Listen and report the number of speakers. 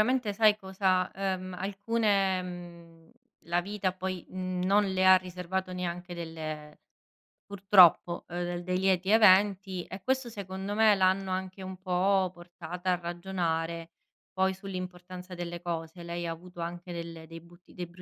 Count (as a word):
one